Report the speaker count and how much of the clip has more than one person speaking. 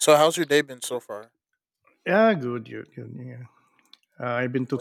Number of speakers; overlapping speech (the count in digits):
2, about 1%